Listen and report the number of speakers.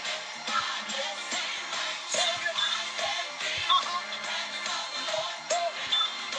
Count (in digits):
0